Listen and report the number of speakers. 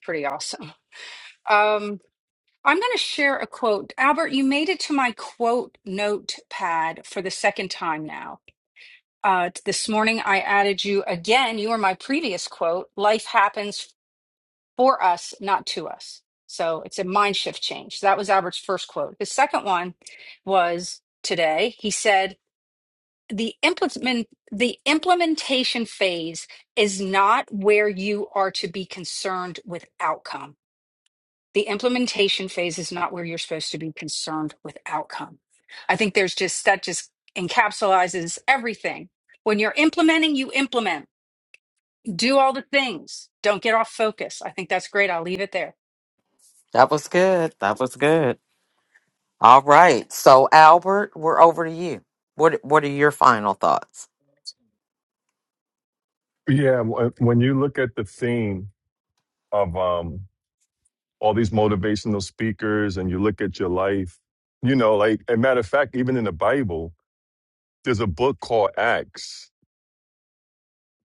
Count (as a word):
three